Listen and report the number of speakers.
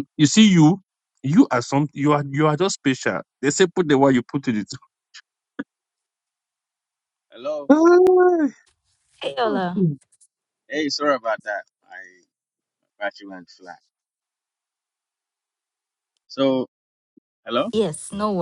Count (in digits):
3